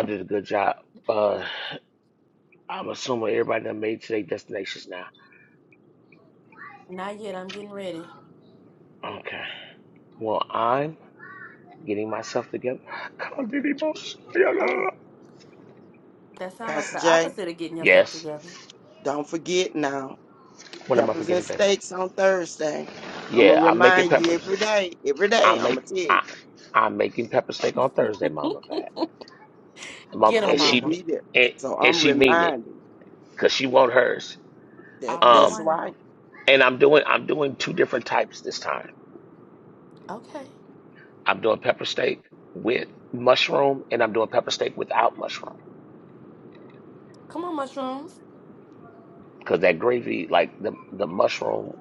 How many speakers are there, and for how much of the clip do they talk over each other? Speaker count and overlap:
three, about 12%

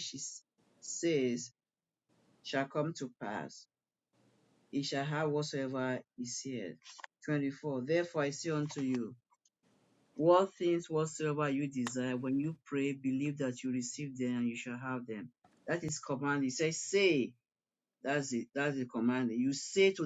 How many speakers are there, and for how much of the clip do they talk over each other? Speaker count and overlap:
one, no overlap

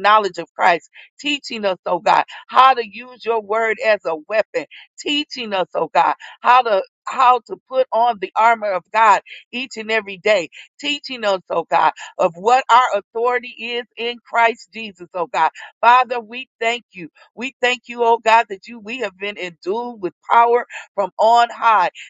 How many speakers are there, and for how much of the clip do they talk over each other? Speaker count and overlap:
one, no overlap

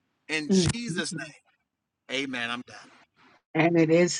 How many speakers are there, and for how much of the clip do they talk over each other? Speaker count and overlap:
two, about 17%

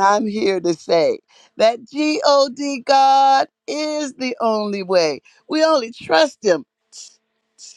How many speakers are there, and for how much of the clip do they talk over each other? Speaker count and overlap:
one, no overlap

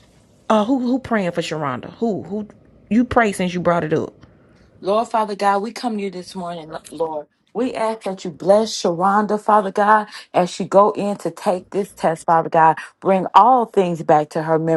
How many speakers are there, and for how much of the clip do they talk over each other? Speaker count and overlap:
two, no overlap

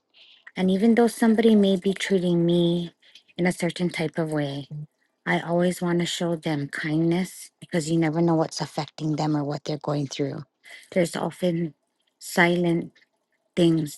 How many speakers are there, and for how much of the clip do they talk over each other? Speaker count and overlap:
one, no overlap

